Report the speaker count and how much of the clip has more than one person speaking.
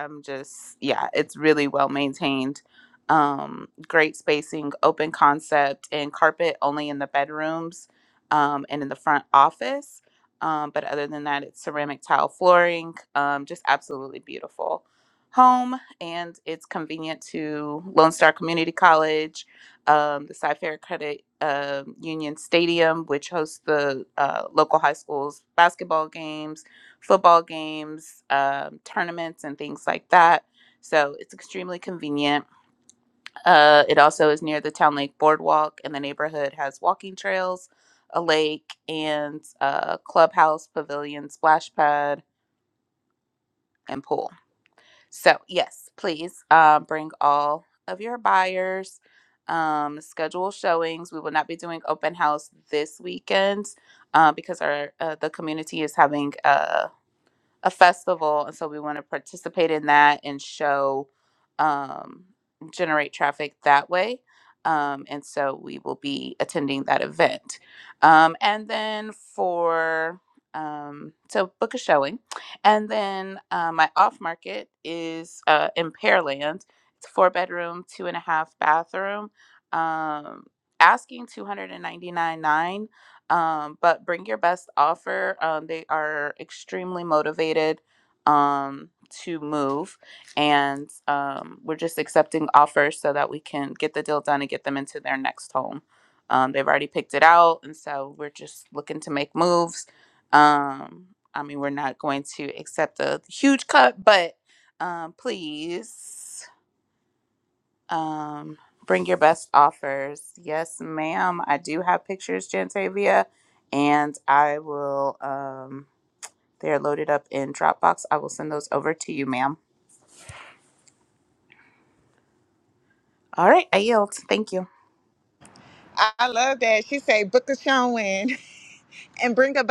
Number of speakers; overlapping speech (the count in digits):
2, no overlap